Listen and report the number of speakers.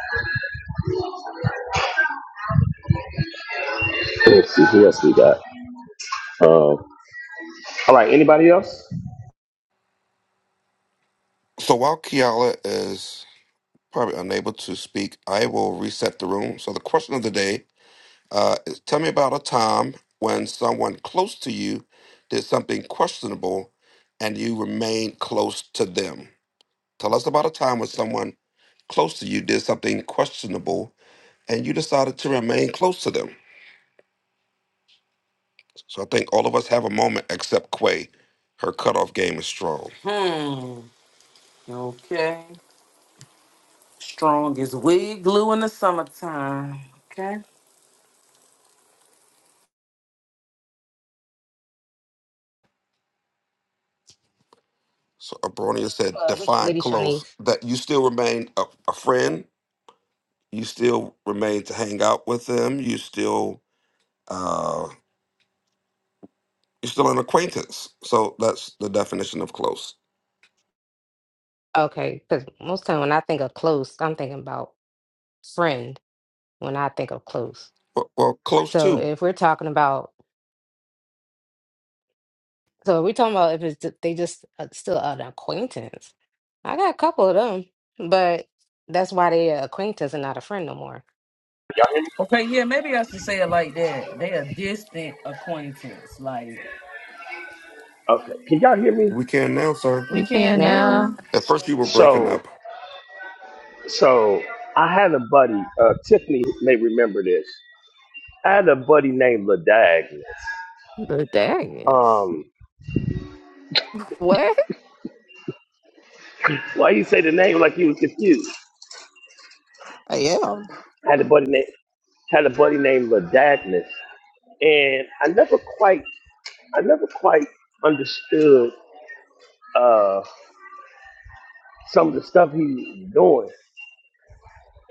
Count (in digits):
5